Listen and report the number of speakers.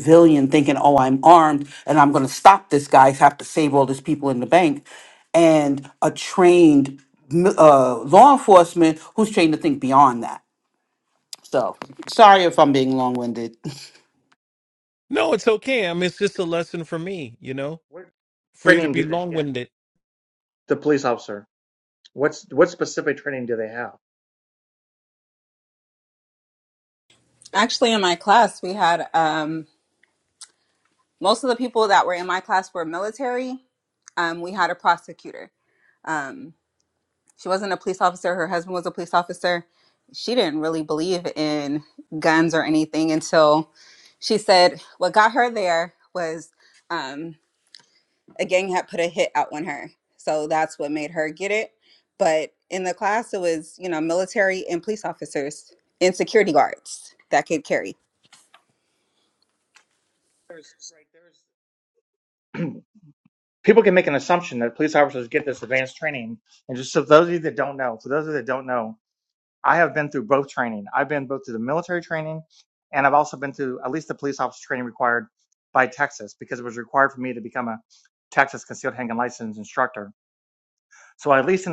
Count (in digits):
4